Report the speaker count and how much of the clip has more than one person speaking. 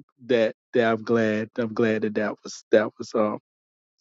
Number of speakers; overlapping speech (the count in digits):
1, no overlap